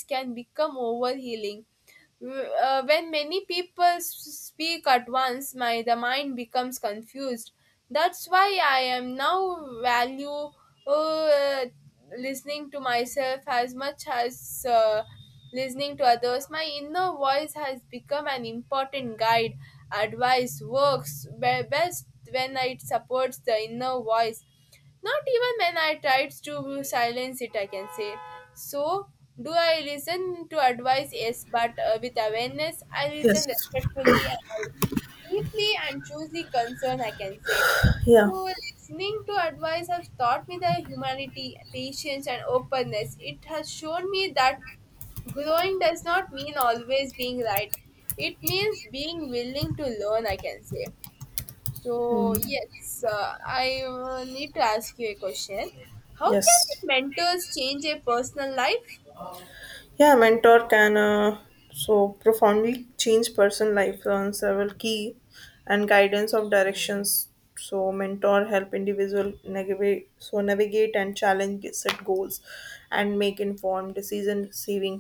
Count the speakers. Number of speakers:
two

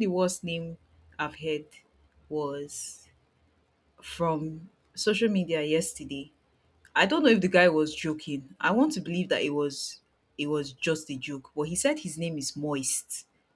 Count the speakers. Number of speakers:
one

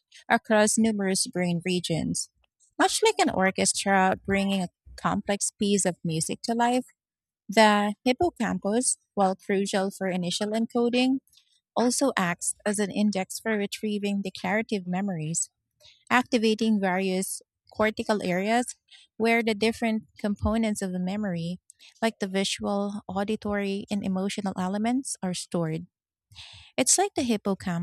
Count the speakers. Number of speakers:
one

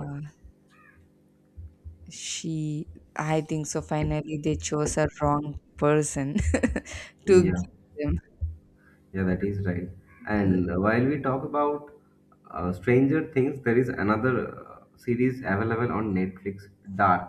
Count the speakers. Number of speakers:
two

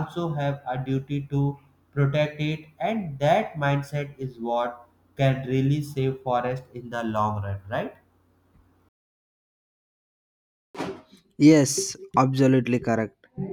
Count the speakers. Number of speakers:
two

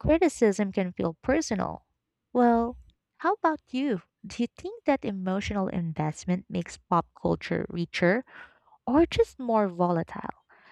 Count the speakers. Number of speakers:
one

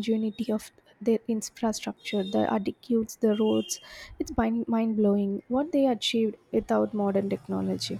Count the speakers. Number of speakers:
one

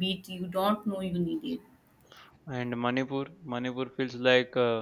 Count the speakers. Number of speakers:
two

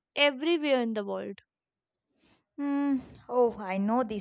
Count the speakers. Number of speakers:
two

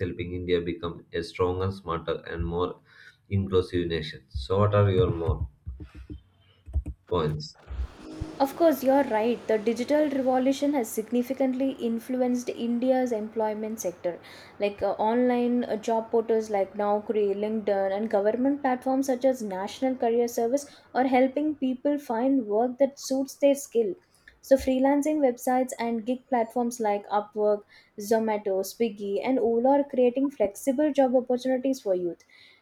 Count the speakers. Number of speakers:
two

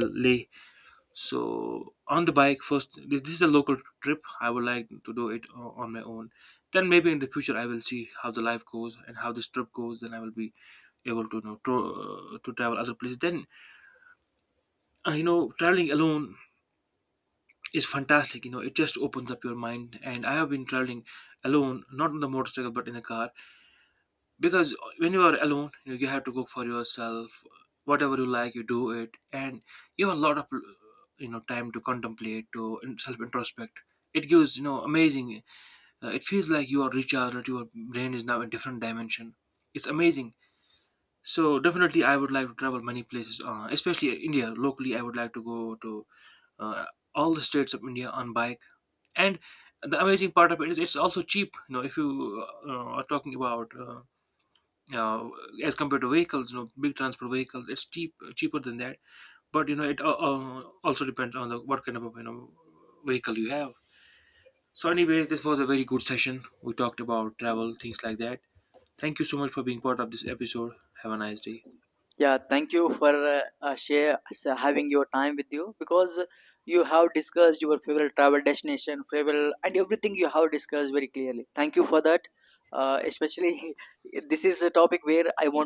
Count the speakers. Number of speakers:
two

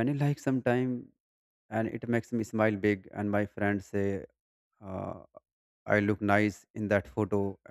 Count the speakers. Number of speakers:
one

